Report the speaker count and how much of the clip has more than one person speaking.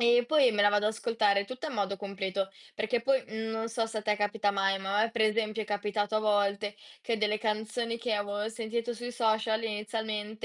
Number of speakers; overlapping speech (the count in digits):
1, no overlap